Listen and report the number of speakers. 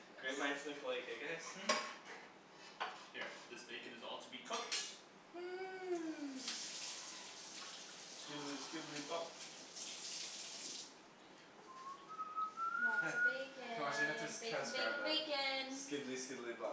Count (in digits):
4